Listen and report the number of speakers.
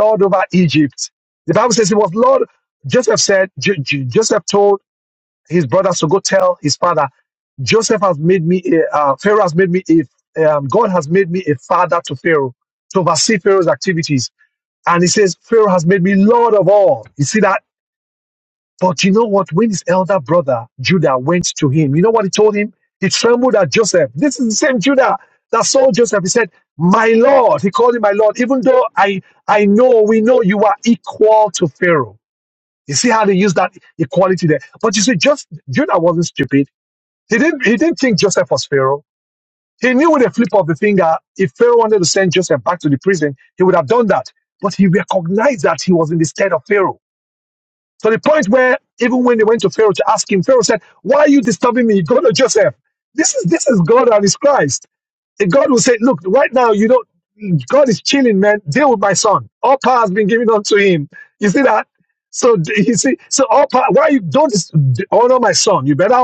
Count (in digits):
1